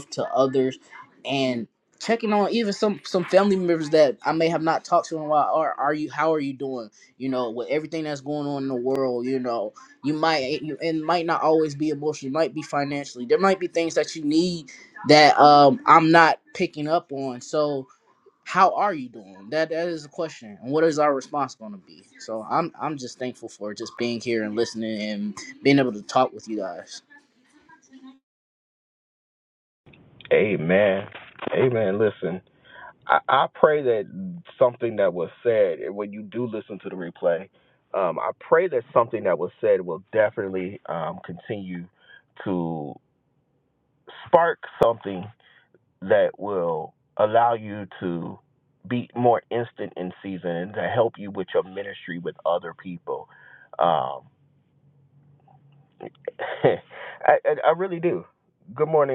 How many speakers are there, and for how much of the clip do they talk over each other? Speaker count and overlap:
2, no overlap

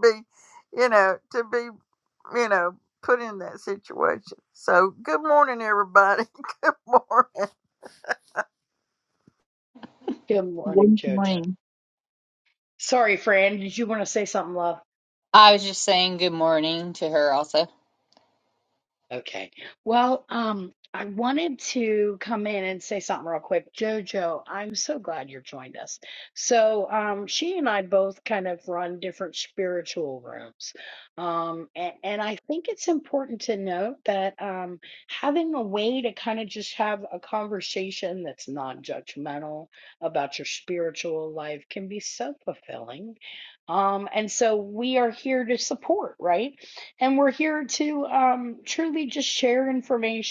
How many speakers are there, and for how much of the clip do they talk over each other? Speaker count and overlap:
3, about 2%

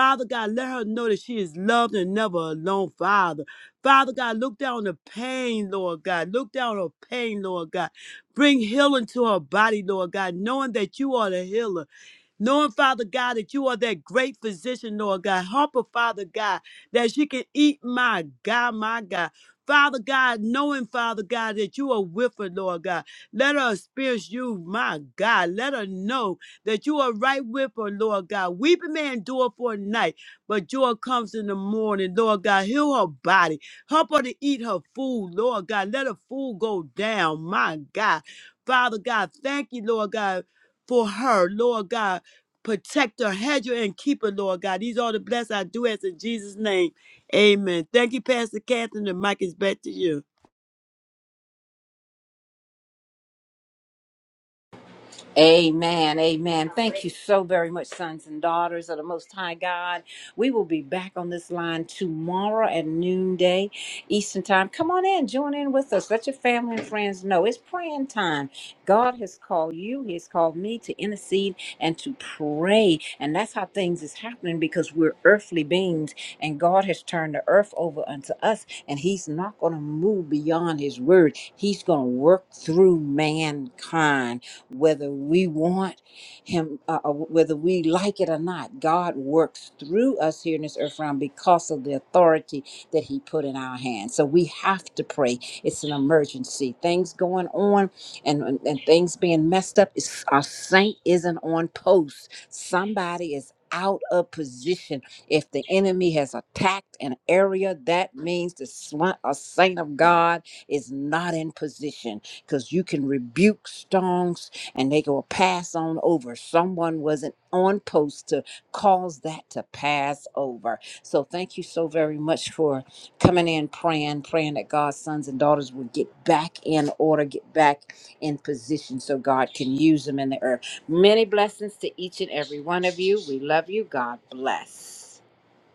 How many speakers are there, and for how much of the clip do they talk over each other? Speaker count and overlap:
2, no overlap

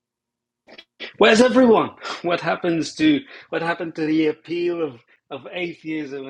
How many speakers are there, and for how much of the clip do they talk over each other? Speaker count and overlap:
1, no overlap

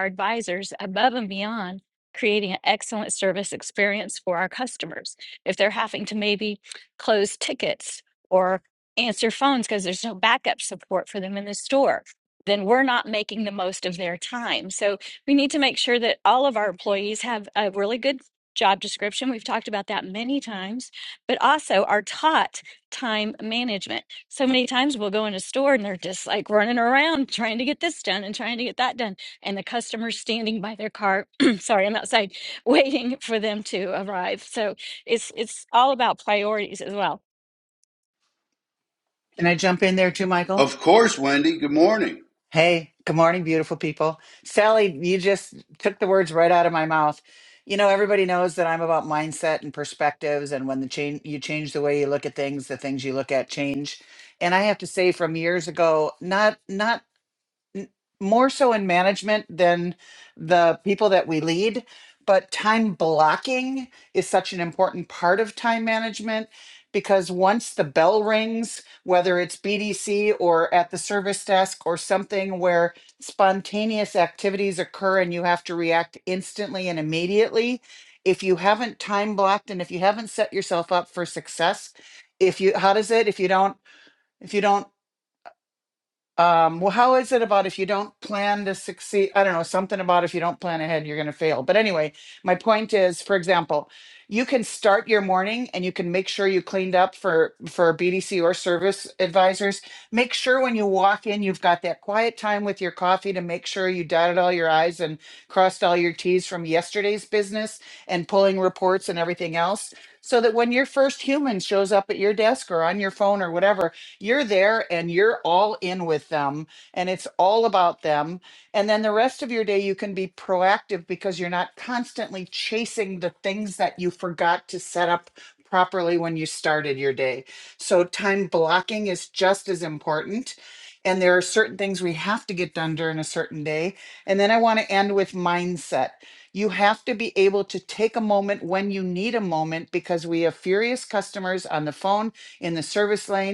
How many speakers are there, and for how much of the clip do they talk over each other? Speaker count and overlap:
3, under 1%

